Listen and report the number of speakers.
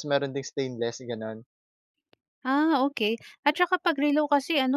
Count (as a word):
two